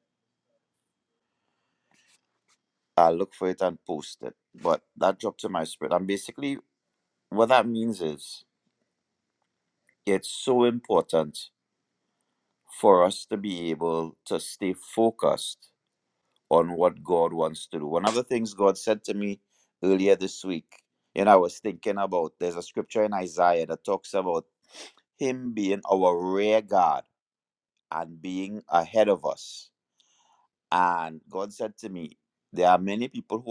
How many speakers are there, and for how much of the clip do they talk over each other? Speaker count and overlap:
1, no overlap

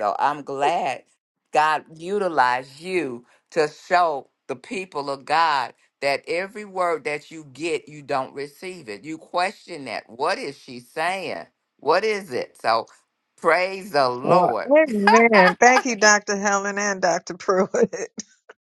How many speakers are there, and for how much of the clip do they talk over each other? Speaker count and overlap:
2, about 2%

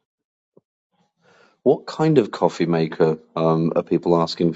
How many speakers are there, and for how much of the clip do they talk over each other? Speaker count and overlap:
1, no overlap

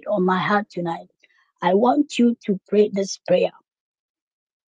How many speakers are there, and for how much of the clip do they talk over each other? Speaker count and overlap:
1, no overlap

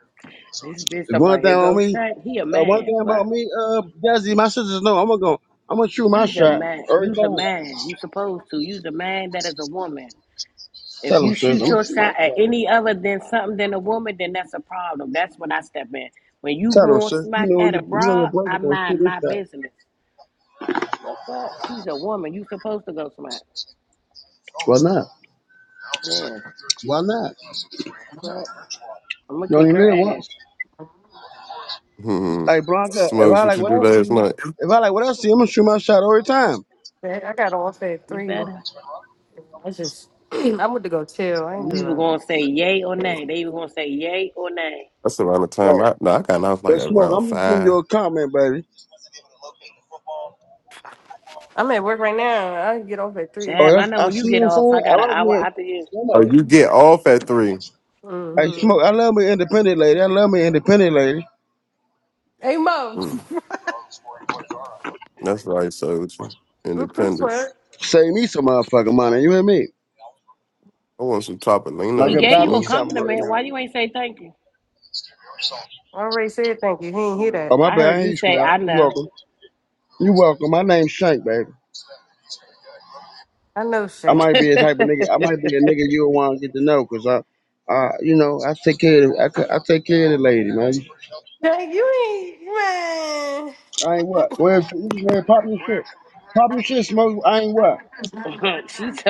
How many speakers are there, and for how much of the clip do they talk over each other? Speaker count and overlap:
4, about 18%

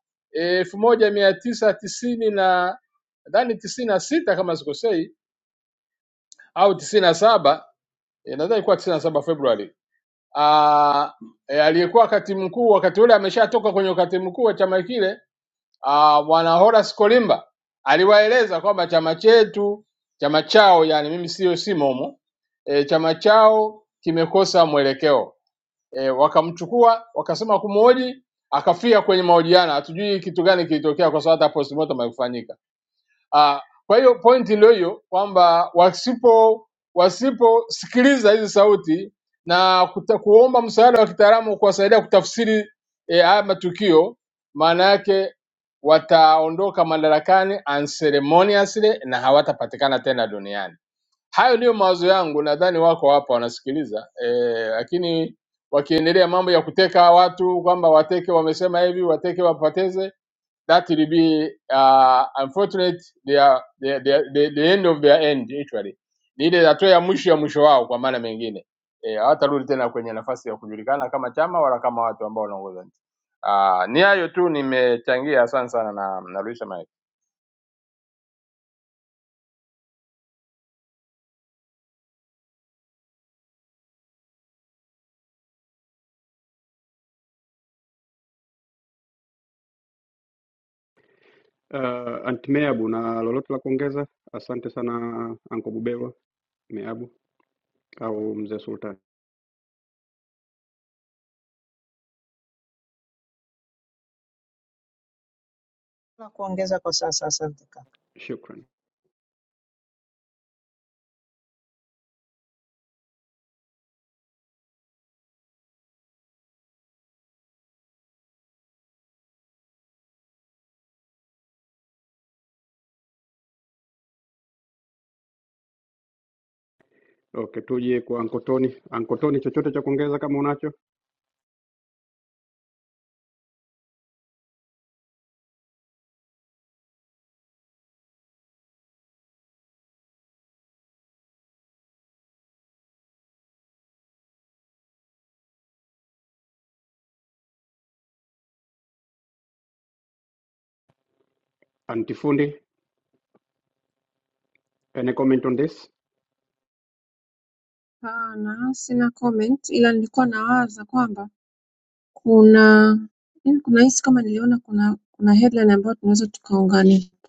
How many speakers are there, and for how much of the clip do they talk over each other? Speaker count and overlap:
4, no overlap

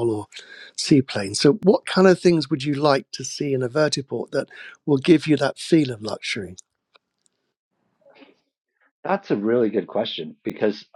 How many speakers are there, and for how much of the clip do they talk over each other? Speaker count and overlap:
2, no overlap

